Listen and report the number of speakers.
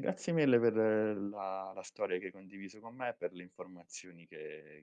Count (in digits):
1